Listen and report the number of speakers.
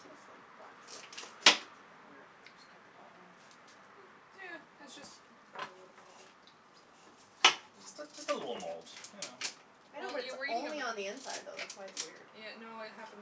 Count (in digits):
3